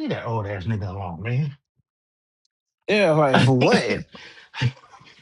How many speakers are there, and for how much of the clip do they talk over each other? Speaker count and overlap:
2, no overlap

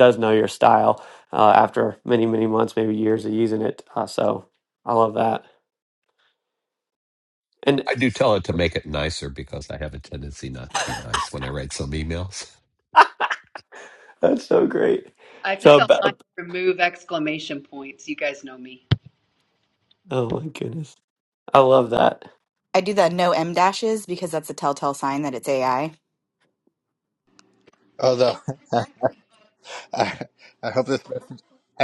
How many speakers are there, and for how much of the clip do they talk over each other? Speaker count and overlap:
5, about 2%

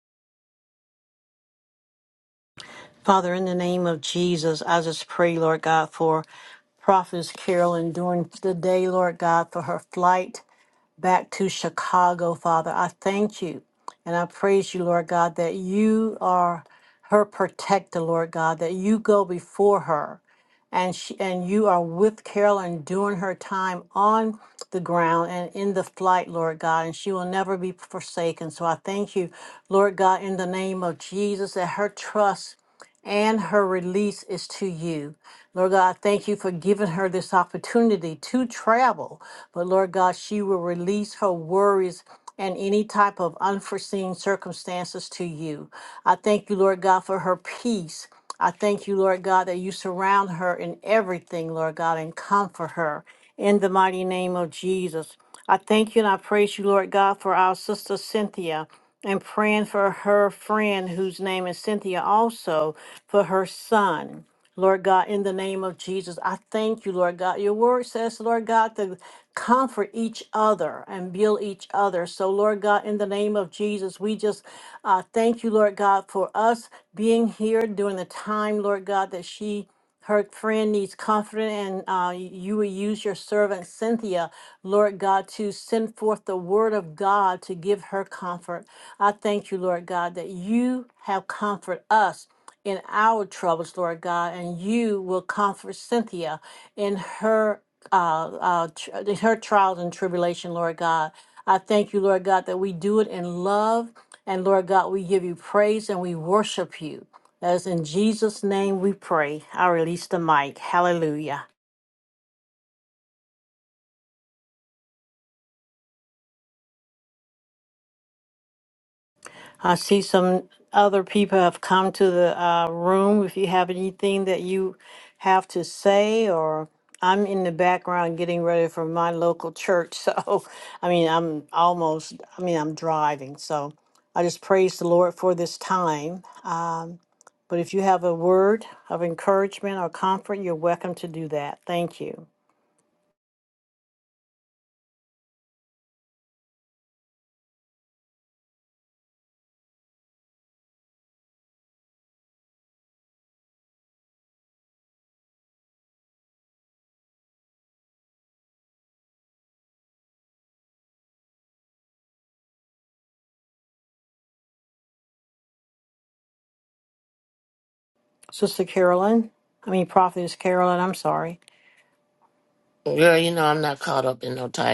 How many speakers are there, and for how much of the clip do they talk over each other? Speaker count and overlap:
2, no overlap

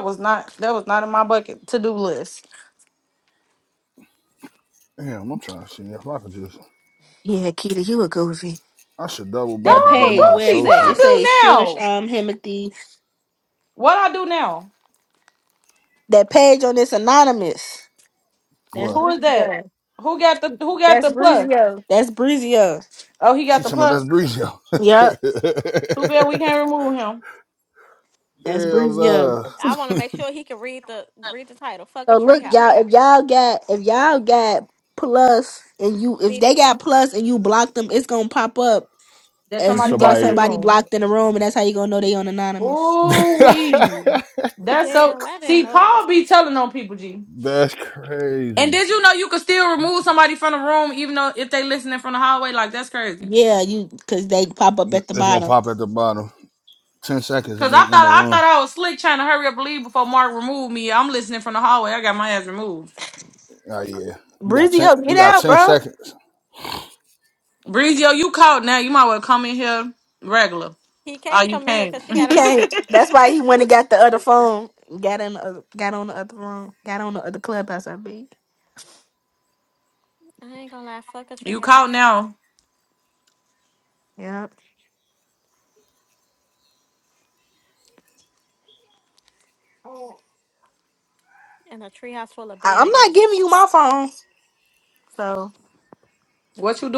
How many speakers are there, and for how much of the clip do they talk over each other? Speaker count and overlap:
4, about 14%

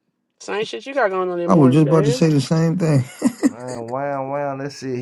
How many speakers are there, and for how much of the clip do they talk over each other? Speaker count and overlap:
3, about 15%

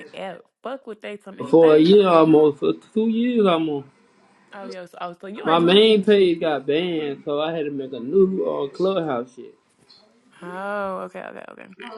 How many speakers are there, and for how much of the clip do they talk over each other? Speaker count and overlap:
2, about 14%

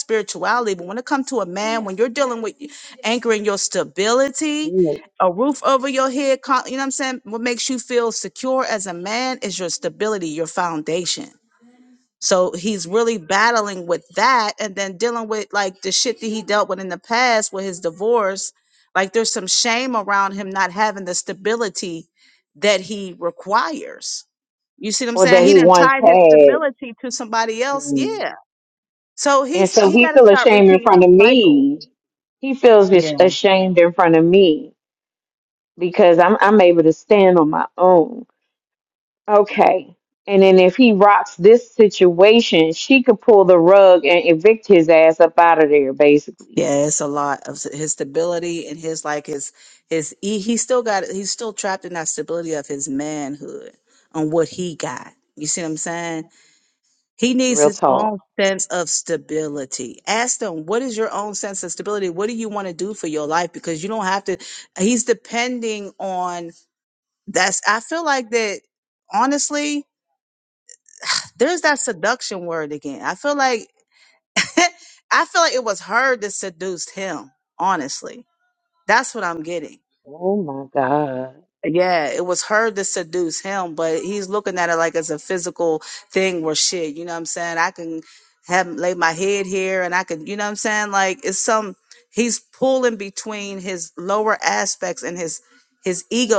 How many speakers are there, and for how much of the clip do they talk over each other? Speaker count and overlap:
2, about 5%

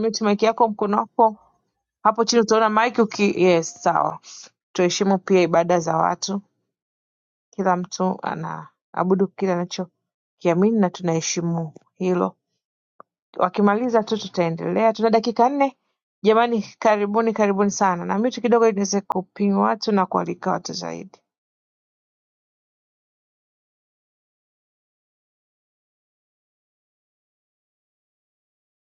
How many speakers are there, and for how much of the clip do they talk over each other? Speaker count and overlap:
1, no overlap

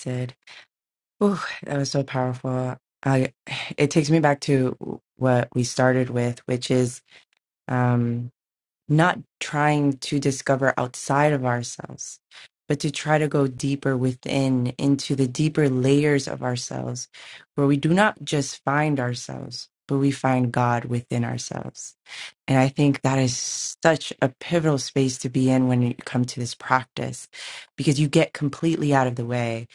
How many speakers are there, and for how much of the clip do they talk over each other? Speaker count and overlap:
1, no overlap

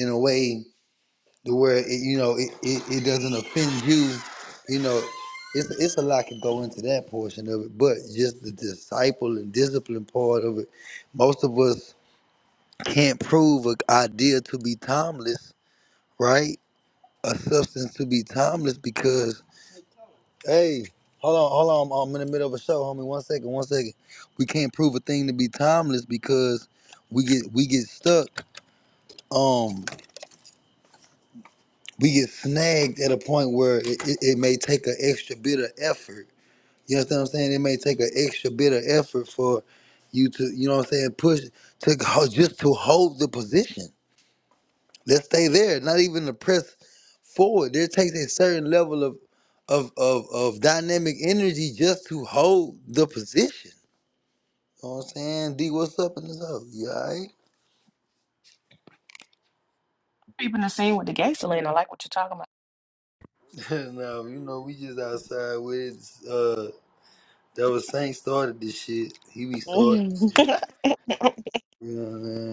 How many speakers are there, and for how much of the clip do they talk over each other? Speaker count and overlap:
2, under 1%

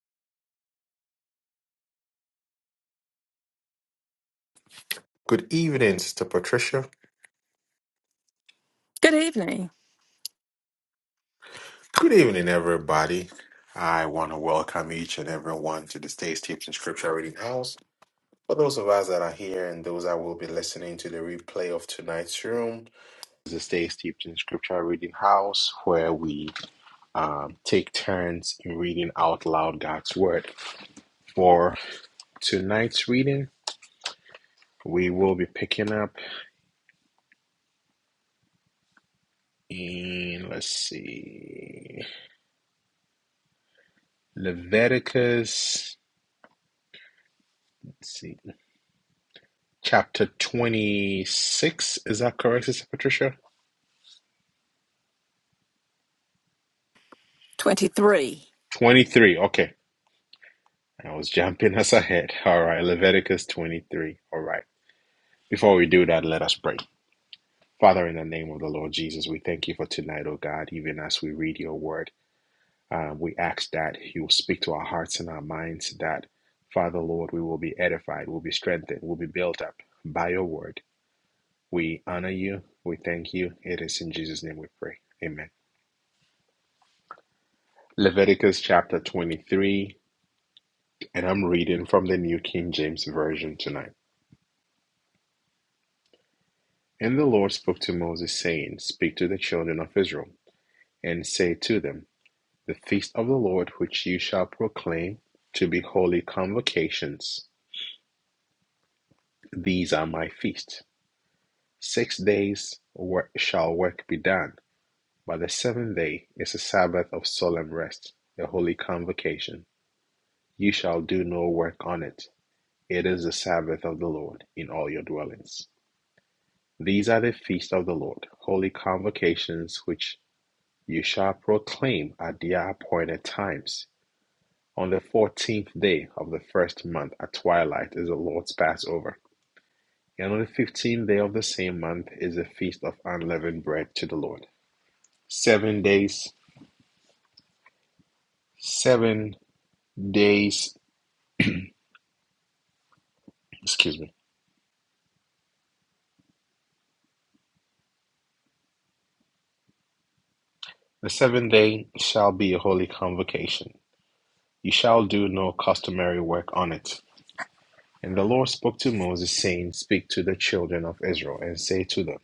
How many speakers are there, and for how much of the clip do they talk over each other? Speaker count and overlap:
2, no overlap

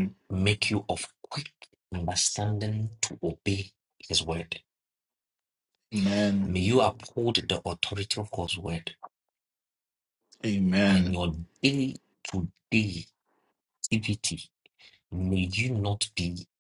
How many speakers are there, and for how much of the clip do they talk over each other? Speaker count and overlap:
2, about 2%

